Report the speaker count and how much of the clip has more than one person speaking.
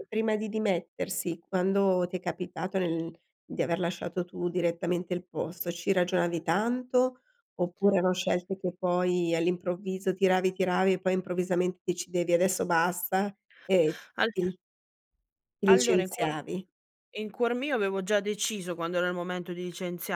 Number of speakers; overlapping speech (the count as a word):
two, about 3%